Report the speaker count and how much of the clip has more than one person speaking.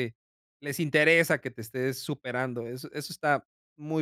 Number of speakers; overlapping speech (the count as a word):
one, no overlap